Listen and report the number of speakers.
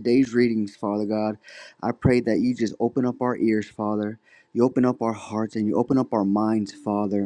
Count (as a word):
one